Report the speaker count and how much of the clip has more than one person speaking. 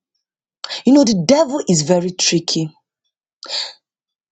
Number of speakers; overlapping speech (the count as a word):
one, no overlap